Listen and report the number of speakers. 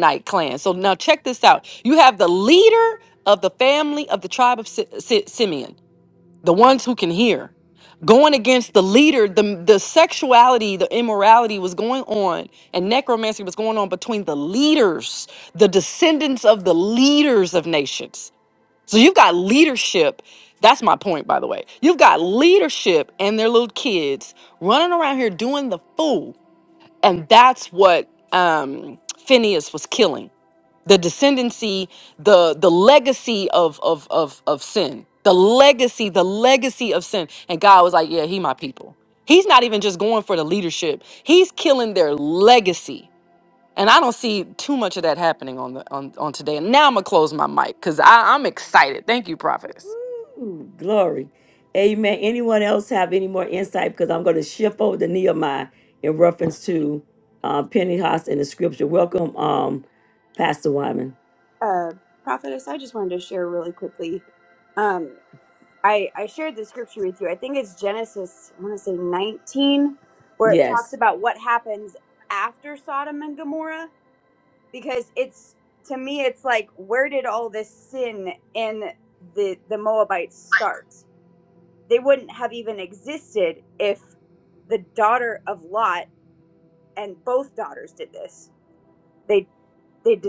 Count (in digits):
3